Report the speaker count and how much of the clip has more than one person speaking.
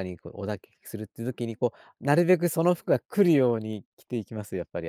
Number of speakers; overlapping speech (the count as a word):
one, no overlap